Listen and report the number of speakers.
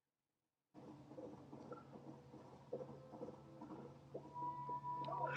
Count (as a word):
zero